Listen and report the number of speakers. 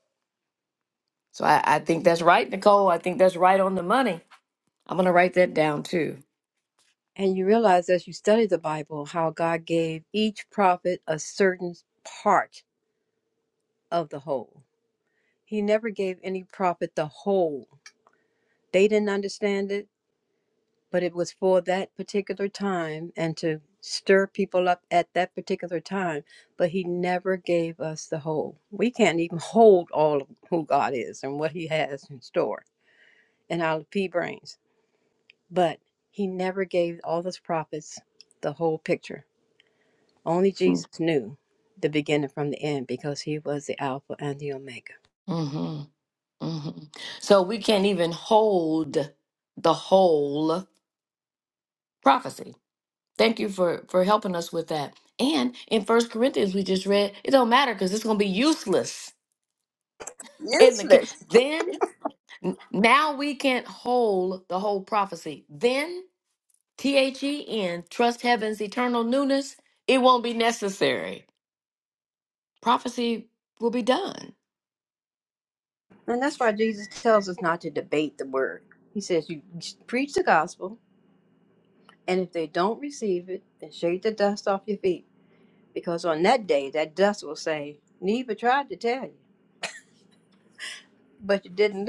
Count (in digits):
2